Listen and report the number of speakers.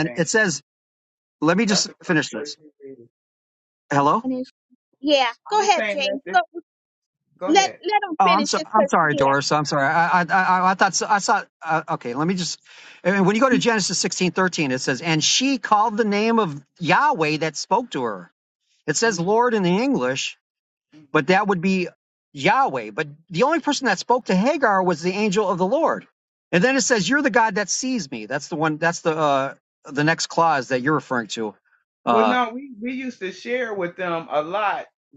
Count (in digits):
3